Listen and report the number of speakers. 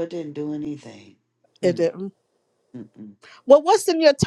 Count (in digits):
2